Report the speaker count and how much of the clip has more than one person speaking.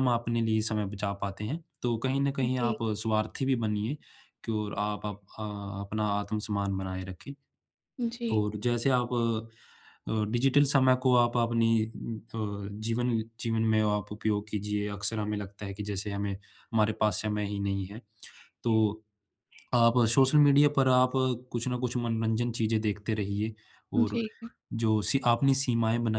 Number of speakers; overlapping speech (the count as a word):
two, about 3%